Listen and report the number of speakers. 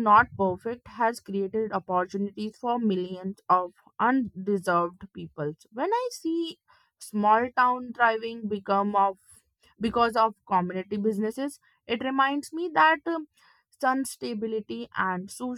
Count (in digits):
1